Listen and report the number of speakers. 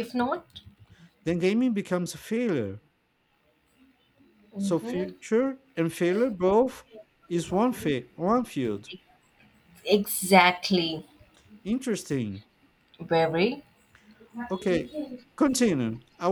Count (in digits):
2